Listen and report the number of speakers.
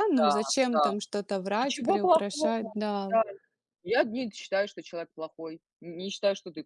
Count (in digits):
2